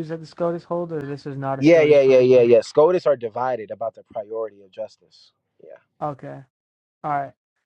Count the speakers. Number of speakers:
2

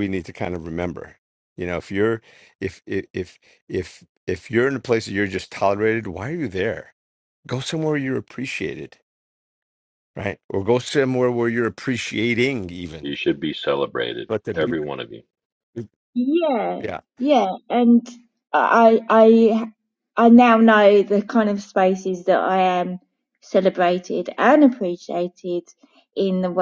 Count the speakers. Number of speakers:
3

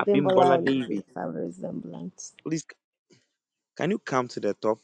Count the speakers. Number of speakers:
2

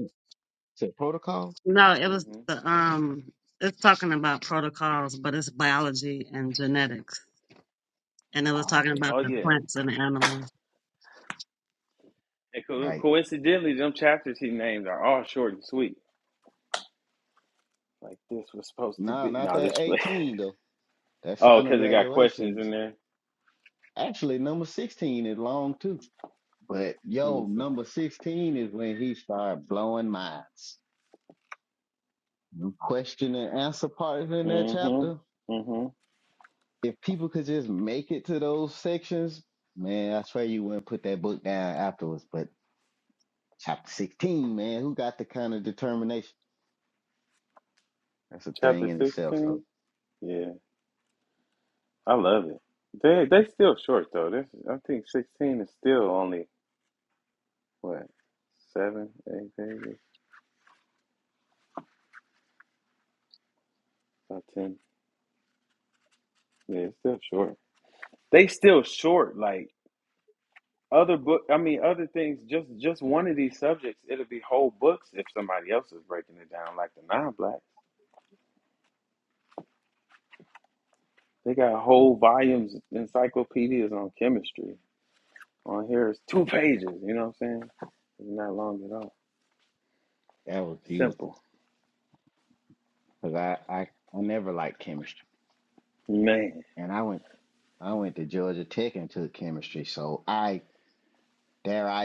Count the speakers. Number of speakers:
3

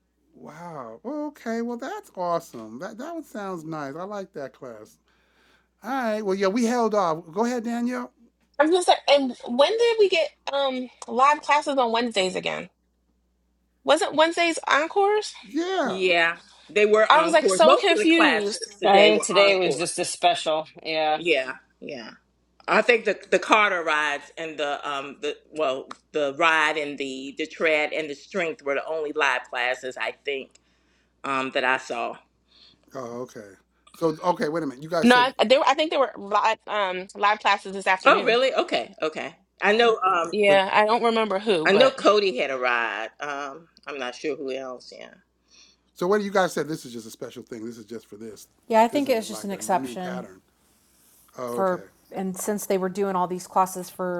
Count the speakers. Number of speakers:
5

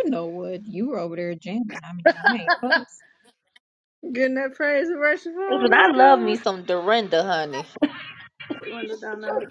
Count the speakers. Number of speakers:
3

